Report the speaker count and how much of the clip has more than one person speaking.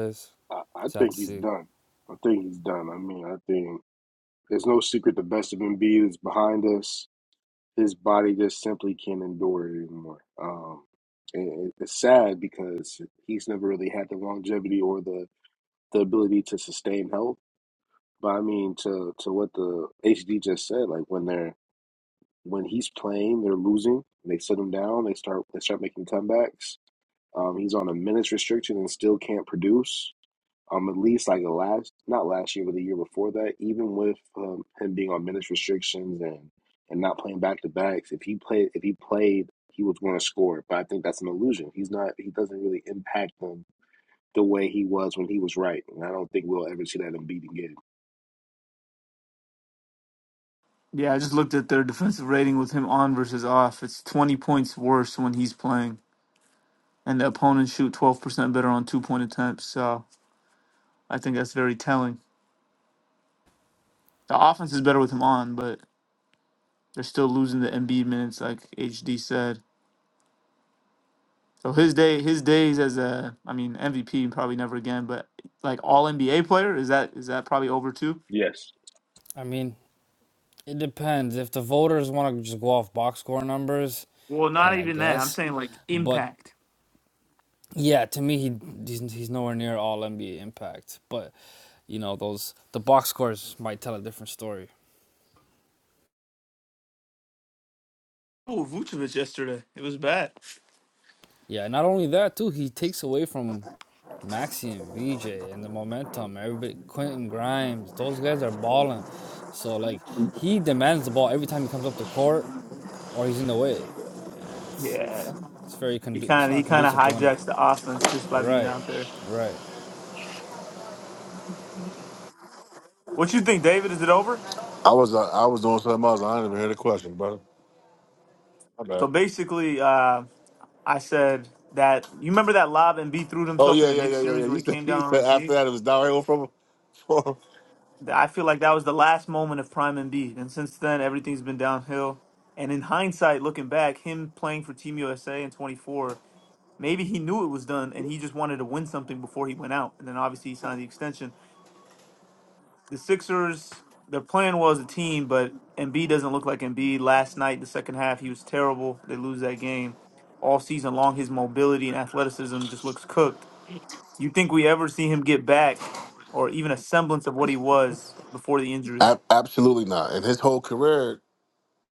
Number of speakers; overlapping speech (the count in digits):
4, about 3%